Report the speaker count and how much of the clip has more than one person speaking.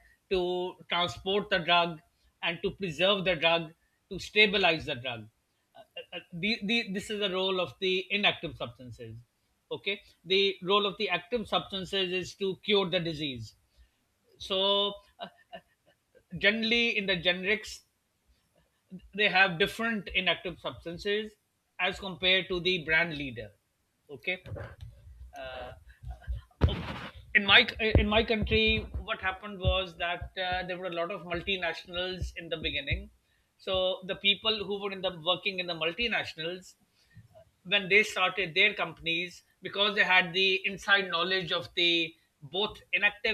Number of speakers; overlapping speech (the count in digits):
1, no overlap